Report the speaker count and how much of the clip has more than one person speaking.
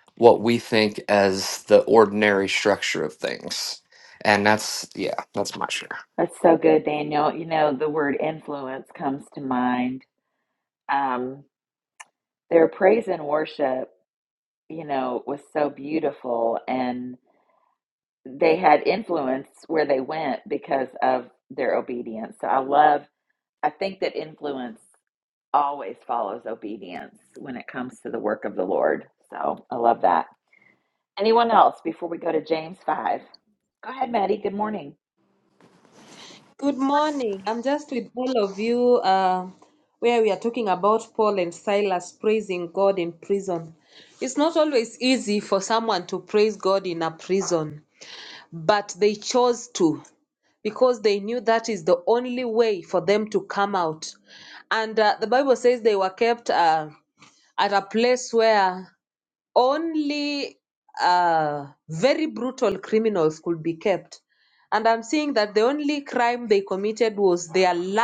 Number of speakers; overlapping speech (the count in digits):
3, no overlap